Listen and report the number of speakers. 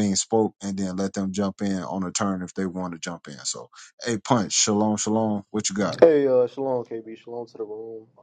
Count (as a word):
two